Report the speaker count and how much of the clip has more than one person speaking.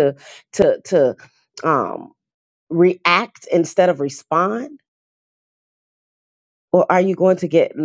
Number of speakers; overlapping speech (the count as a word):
one, no overlap